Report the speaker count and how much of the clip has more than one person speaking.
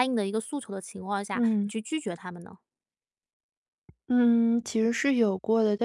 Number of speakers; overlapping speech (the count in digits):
2, about 6%